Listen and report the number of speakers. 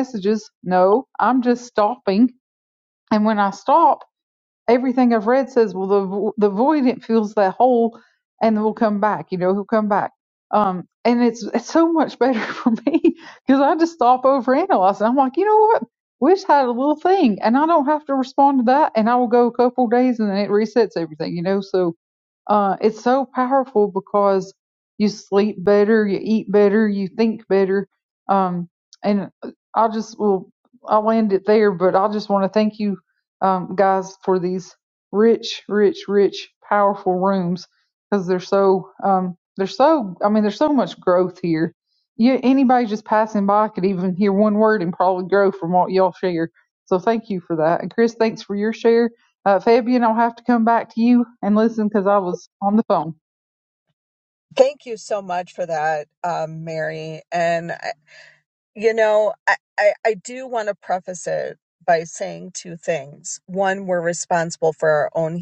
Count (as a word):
two